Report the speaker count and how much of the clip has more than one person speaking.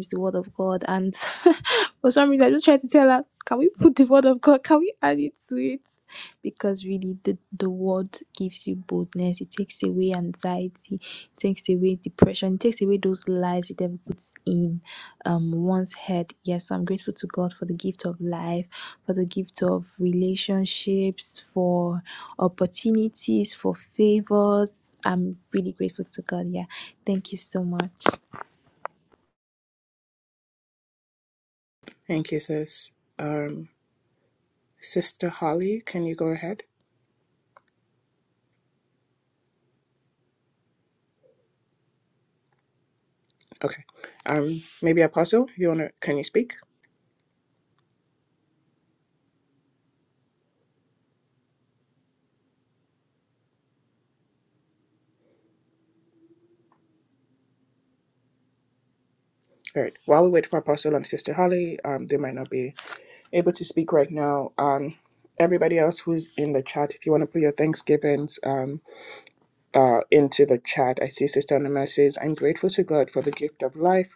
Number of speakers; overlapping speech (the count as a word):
two, no overlap